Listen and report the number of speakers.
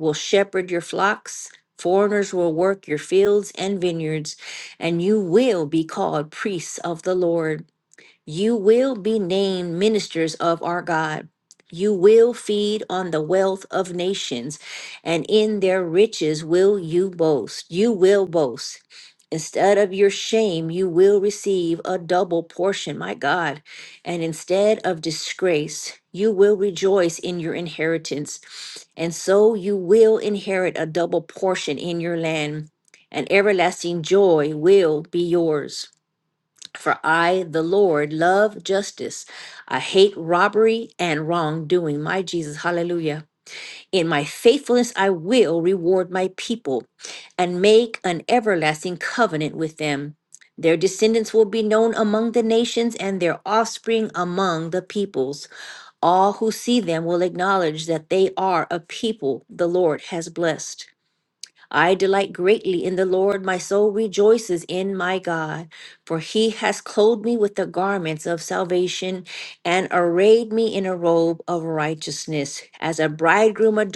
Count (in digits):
1